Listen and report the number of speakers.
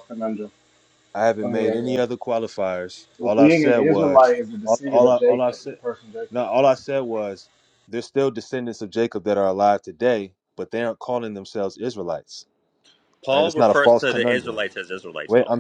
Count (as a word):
three